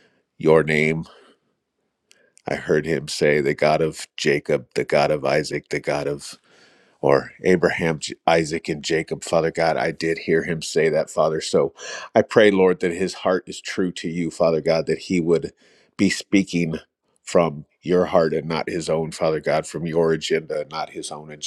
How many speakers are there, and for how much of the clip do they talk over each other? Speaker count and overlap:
one, no overlap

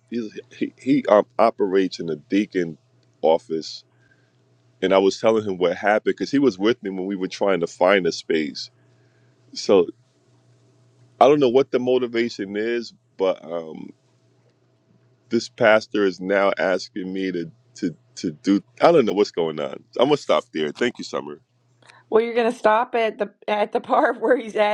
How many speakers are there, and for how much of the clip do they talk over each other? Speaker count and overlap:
two, no overlap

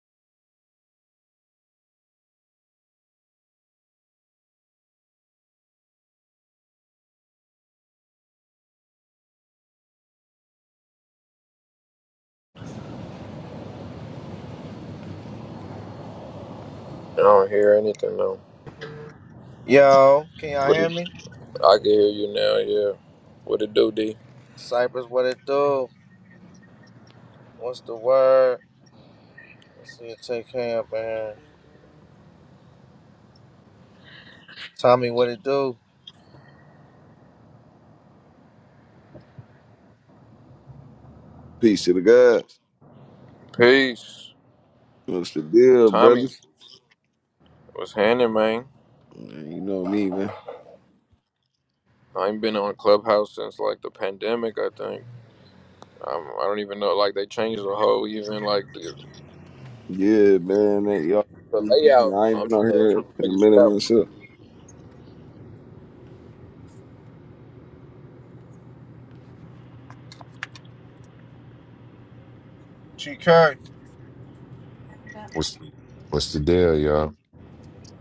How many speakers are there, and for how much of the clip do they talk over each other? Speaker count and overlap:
four, about 4%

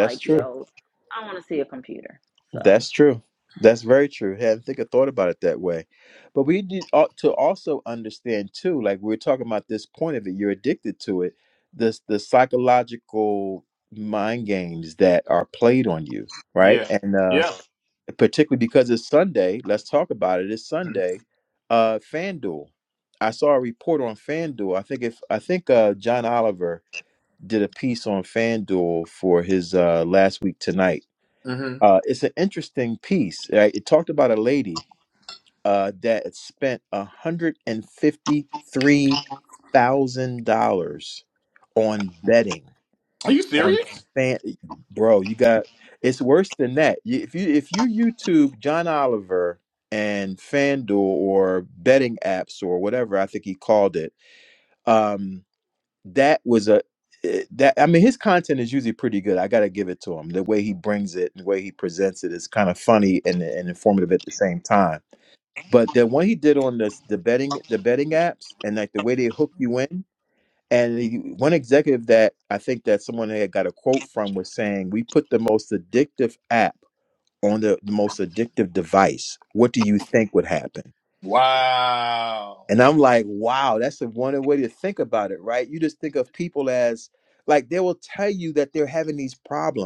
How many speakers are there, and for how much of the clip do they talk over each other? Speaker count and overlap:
three, about 1%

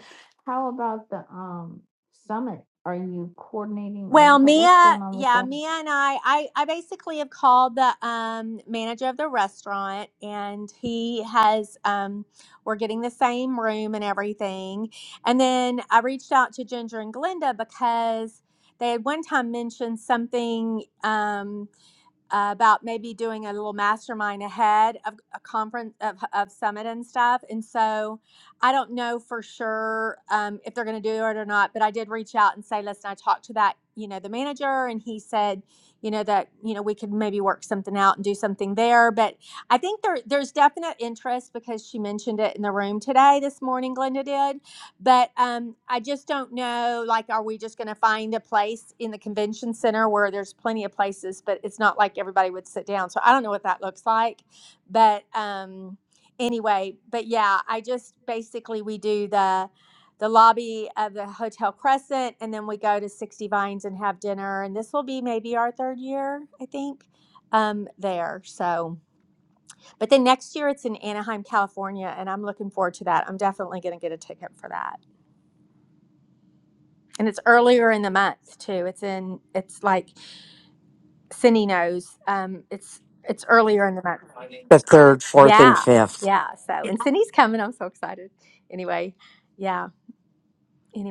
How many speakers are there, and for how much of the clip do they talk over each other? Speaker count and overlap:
three, about 2%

